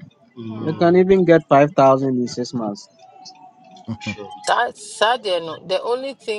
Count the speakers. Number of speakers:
3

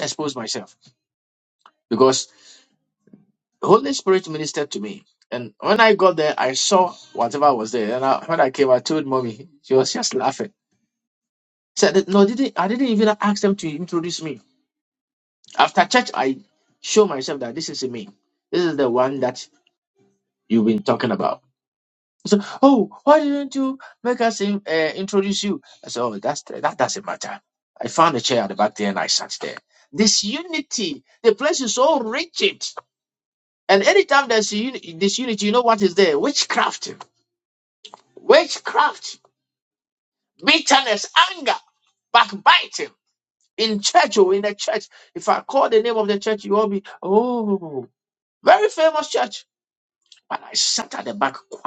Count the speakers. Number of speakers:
1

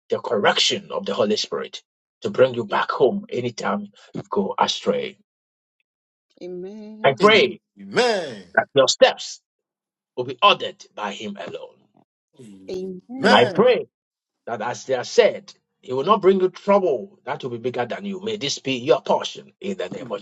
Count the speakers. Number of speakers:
3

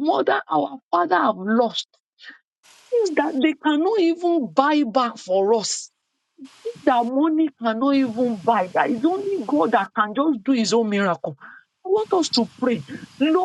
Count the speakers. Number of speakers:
1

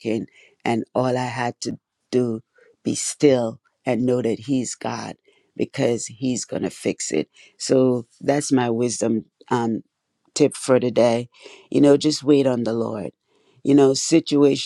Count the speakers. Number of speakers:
1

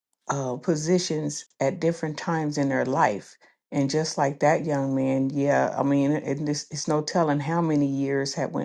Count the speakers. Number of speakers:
1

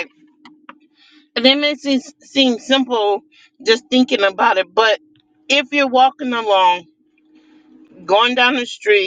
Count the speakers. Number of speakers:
1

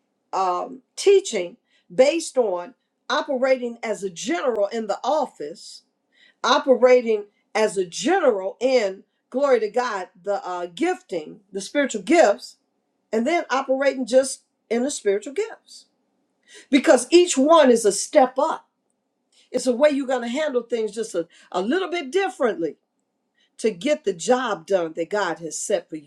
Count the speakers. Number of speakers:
1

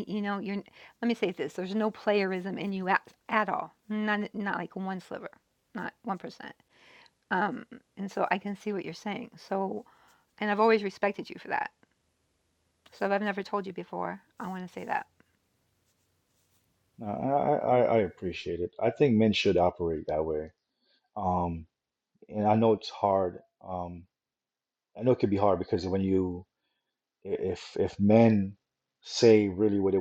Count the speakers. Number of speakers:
2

